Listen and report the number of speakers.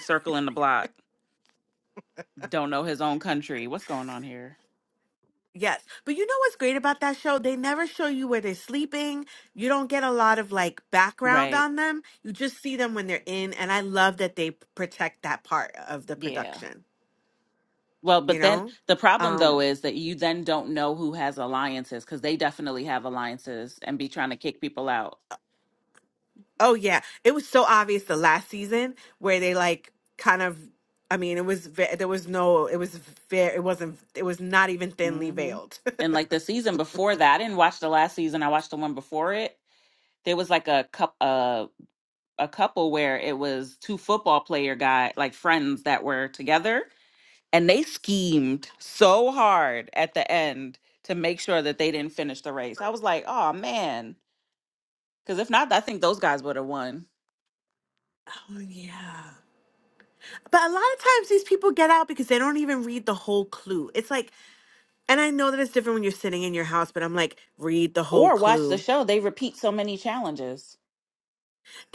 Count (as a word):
two